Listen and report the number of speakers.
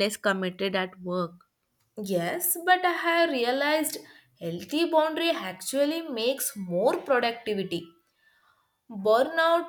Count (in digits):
2